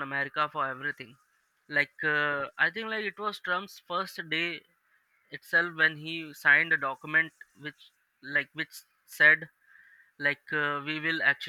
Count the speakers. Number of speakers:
one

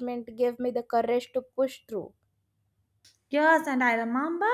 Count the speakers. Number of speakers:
two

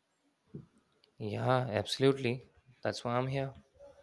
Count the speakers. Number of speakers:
one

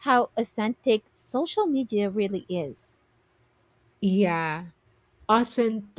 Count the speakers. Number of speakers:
two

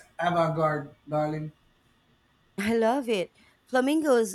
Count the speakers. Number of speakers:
two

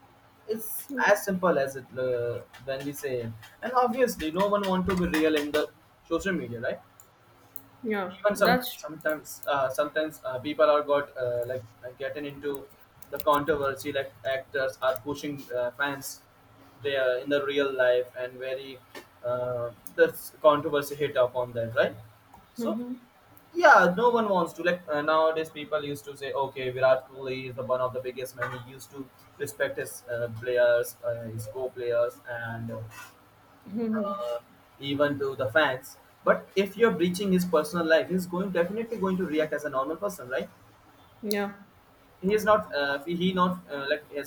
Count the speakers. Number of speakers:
two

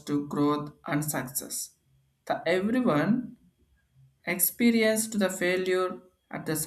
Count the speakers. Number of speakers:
one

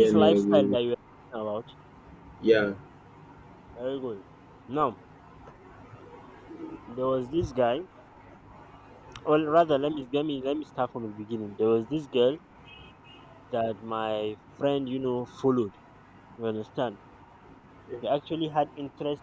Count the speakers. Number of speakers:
two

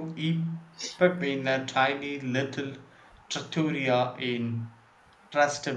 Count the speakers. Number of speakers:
one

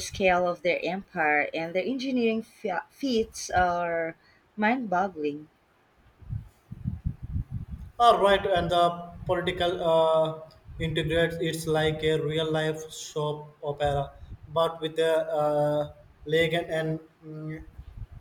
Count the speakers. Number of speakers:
two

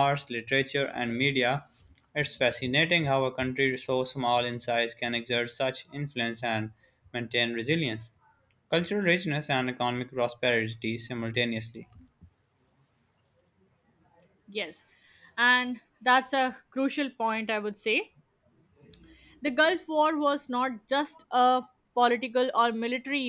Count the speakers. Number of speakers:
two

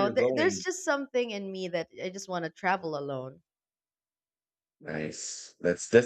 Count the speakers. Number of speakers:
two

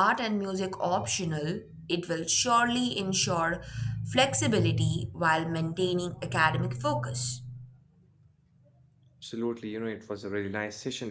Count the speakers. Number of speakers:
two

